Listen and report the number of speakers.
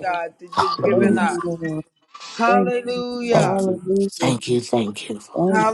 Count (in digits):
3